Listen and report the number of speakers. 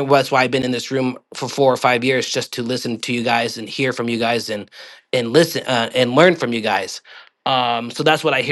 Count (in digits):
1